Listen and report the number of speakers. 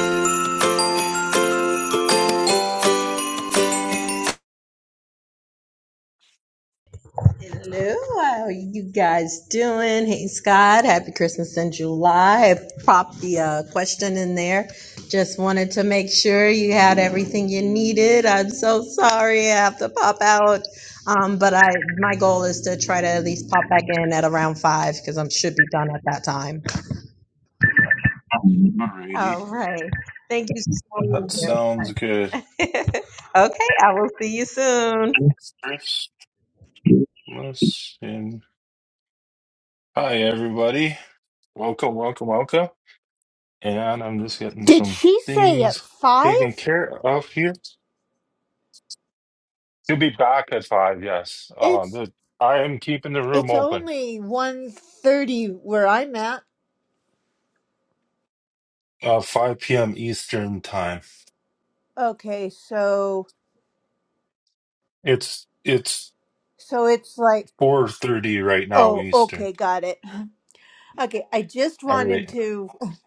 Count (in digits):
3